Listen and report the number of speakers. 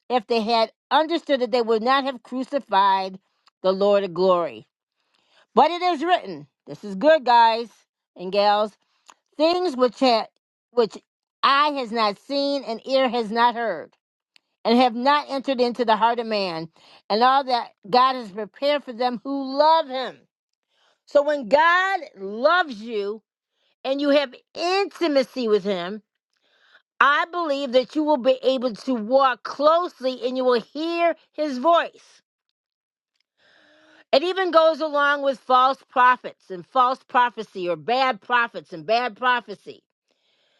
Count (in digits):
1